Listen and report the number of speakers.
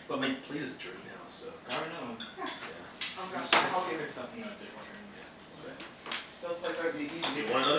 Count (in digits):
3